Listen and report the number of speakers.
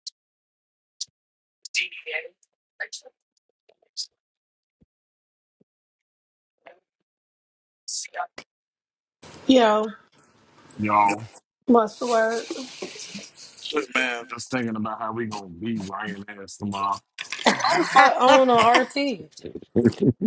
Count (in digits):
3